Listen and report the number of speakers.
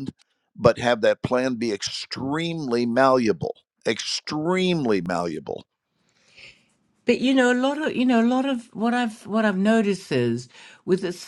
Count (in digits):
2